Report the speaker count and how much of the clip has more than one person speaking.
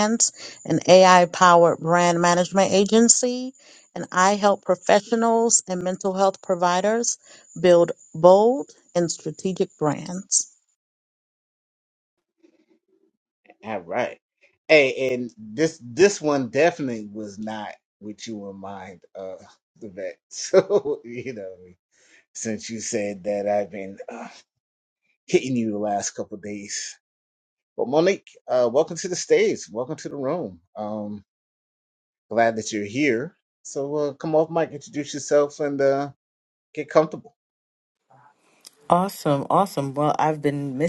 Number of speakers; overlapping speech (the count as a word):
three, no overlap